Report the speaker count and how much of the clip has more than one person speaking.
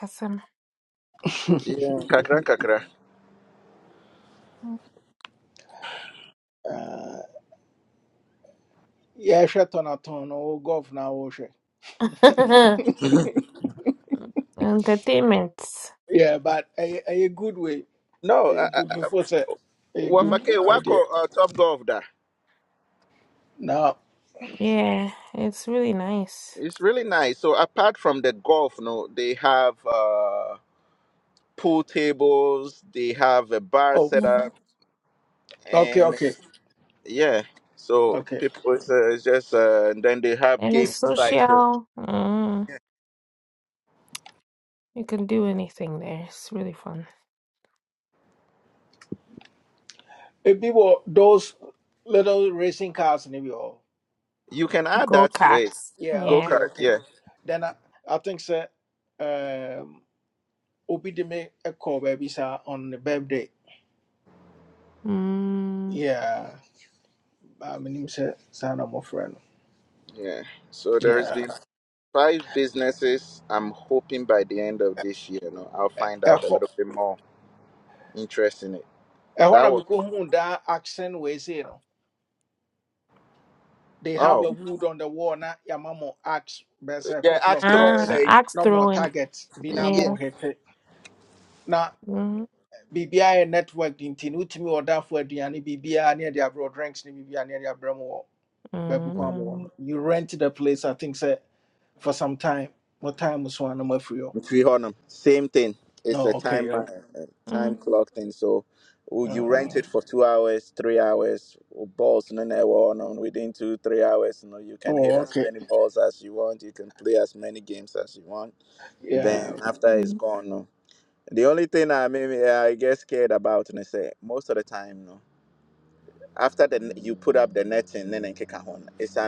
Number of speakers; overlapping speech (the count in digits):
3, about 9%